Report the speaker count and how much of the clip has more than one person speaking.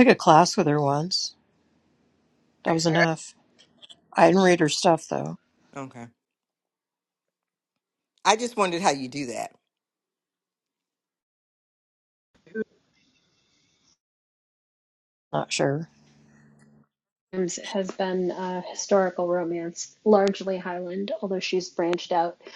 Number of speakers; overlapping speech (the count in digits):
3, no overlap